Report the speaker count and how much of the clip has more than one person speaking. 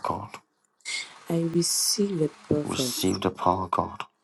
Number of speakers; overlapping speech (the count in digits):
2, about 8%